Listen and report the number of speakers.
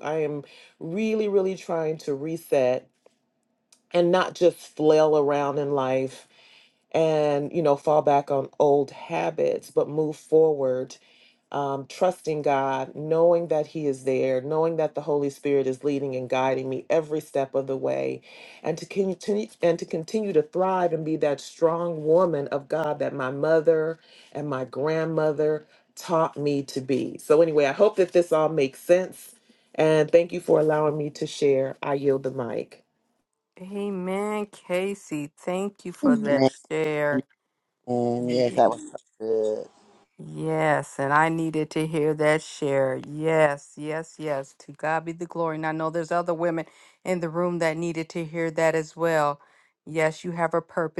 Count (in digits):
3